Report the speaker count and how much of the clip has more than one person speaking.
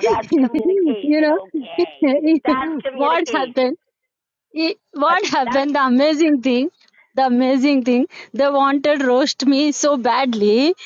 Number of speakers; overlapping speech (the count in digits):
2, about 16%